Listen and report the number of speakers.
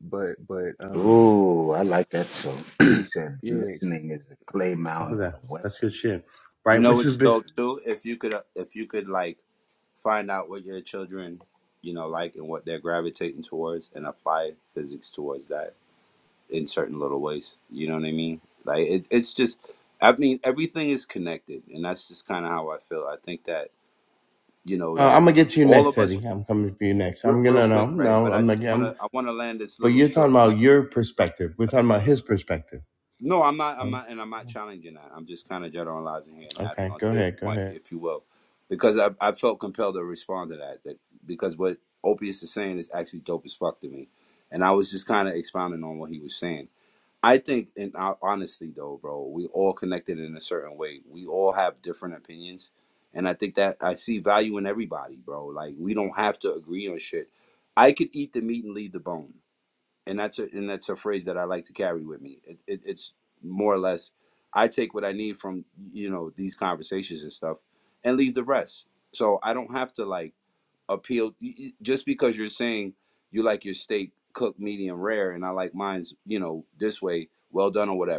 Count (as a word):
four